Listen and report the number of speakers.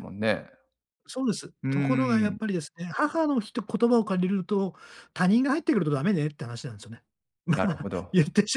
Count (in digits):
2